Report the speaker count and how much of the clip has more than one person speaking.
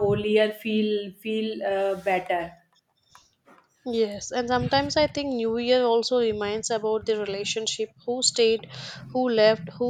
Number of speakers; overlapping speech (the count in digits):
2, no overlap